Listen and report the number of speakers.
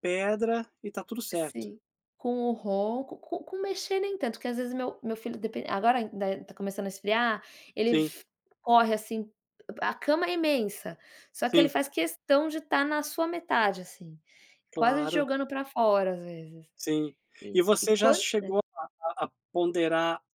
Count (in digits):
2